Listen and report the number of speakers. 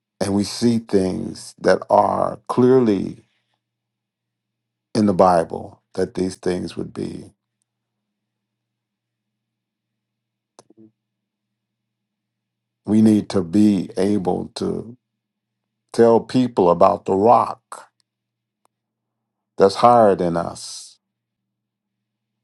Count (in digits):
1